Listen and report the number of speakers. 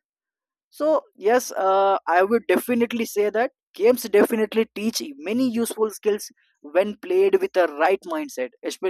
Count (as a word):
one